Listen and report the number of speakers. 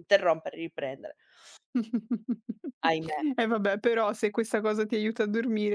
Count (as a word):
two